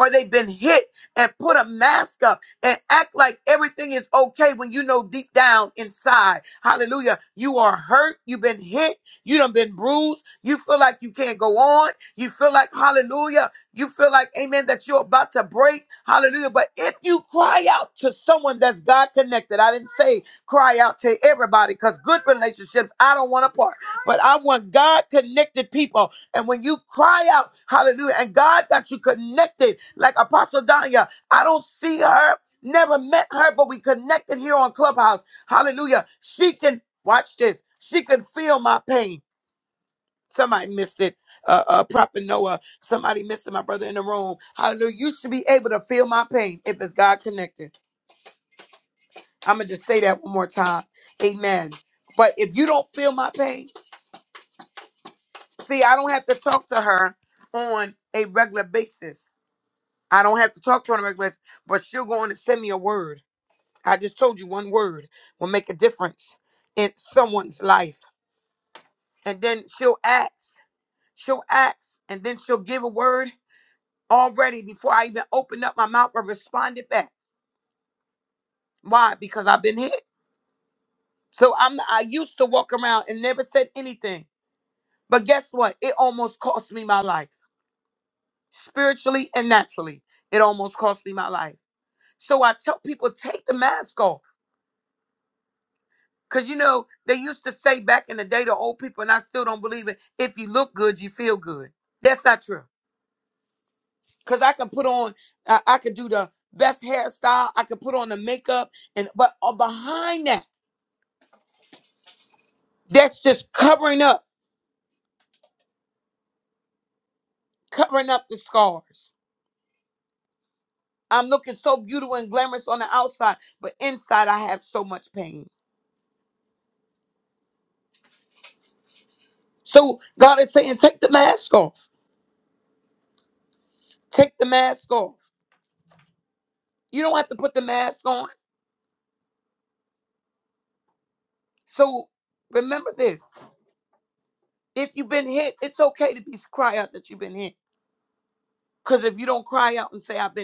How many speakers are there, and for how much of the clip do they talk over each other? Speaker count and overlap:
one, no overlap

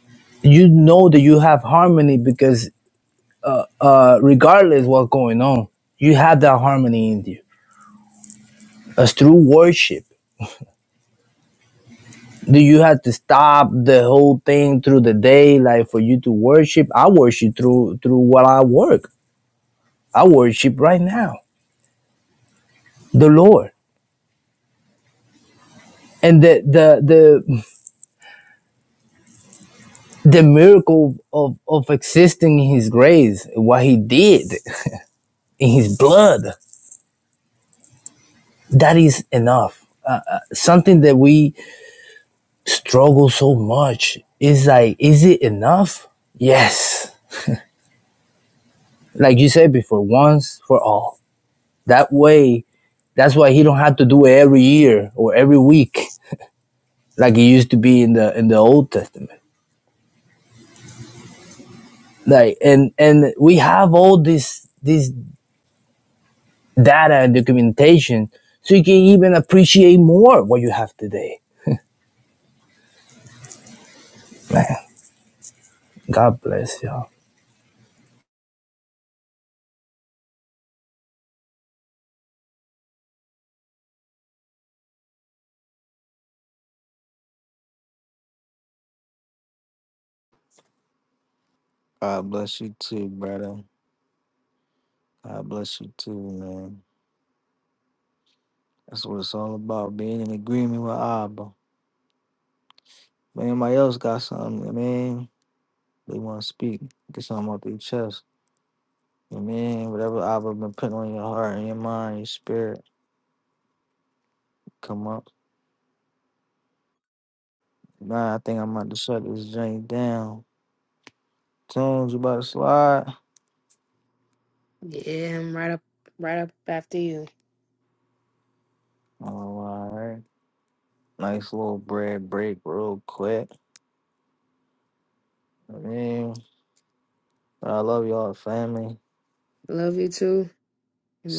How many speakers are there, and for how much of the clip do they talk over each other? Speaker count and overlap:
three, under 1%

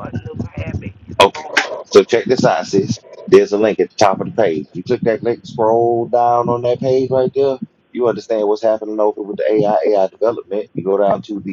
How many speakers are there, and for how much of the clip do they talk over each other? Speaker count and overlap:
two, about 3%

